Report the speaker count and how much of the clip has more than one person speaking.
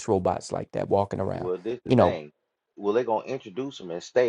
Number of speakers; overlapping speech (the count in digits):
2, about 8%